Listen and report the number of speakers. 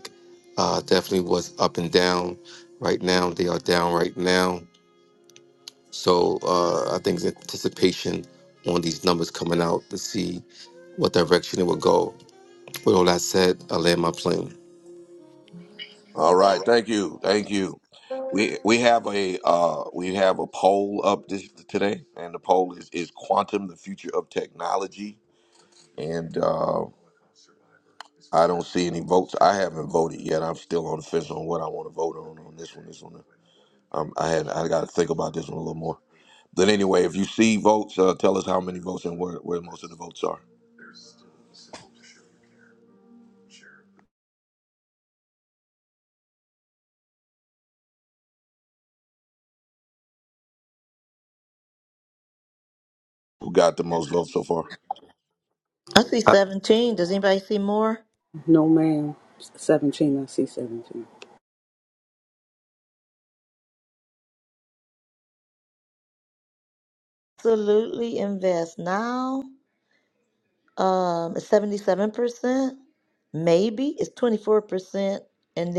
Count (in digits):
4